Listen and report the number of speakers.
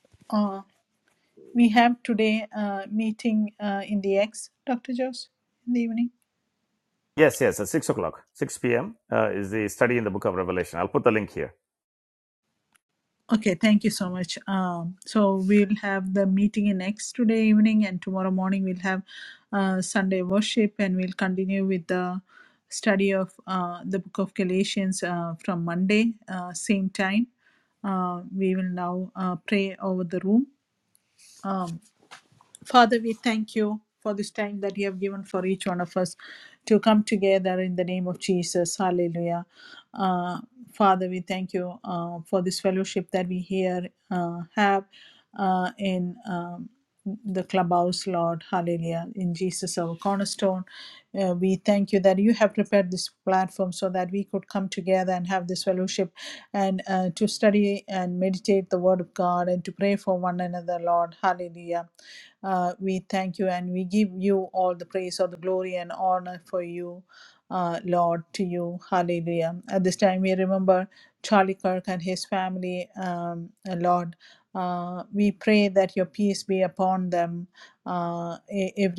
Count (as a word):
two